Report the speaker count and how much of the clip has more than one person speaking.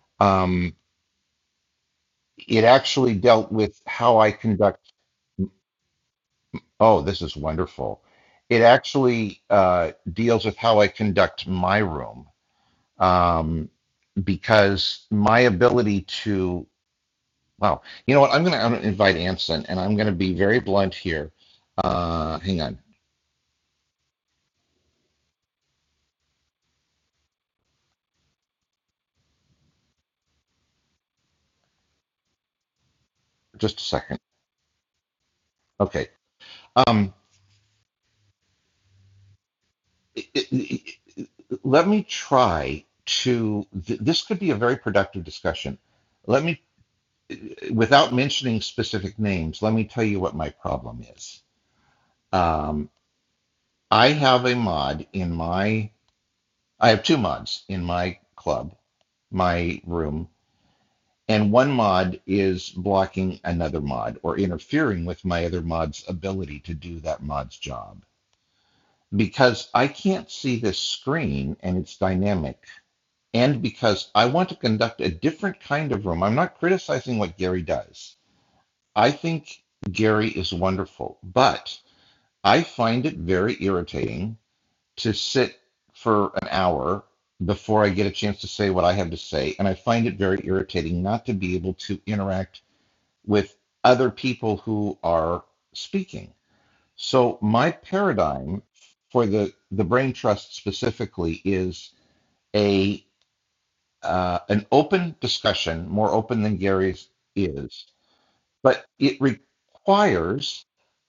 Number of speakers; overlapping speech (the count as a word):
one, no overlap